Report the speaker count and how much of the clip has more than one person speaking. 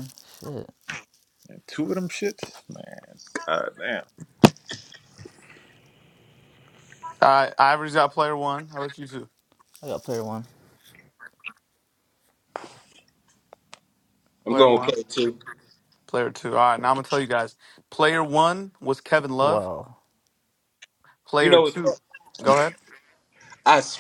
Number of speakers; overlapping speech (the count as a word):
four, about 5%